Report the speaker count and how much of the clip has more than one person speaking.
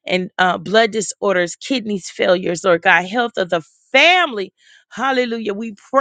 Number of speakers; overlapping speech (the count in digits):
1, no overlap